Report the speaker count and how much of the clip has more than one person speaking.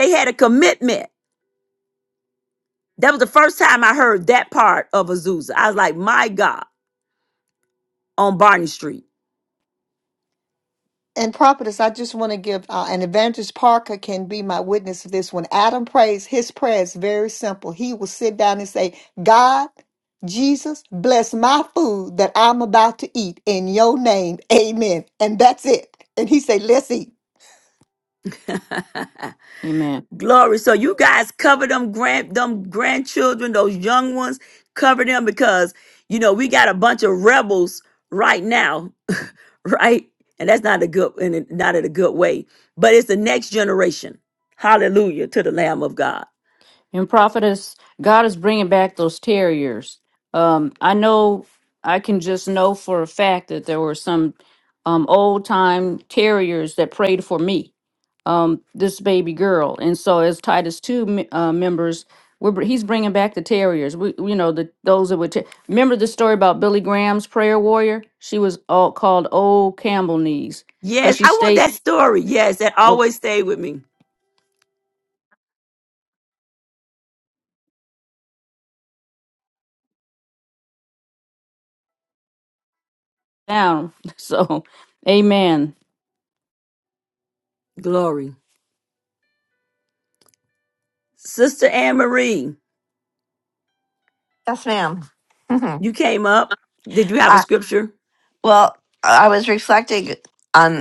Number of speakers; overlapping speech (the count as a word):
four, about 1%